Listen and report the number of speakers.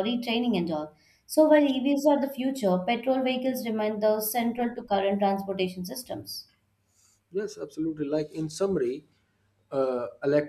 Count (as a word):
two